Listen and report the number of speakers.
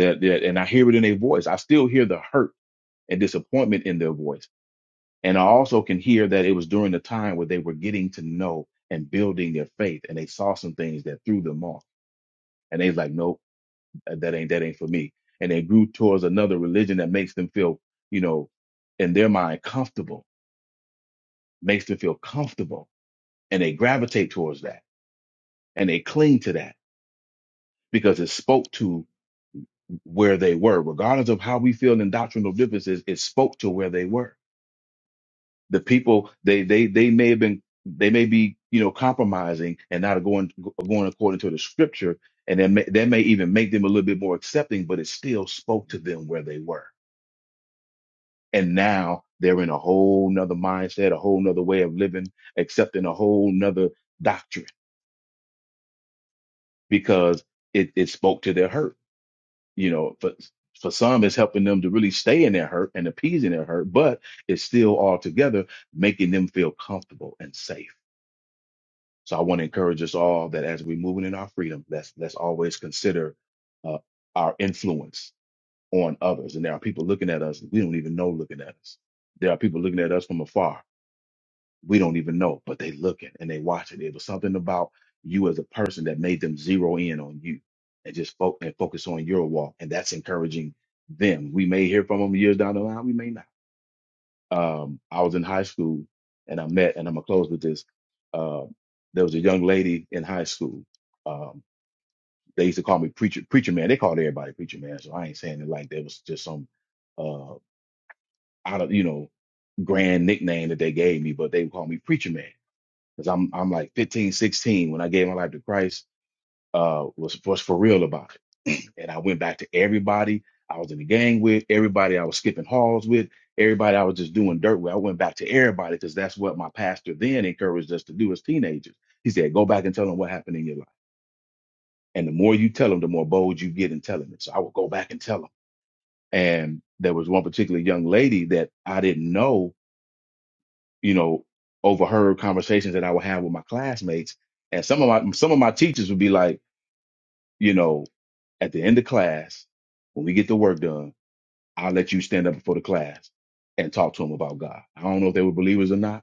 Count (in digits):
1